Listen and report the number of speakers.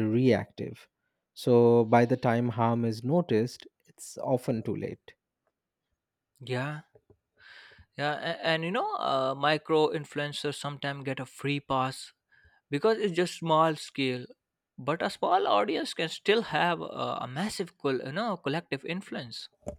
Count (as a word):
two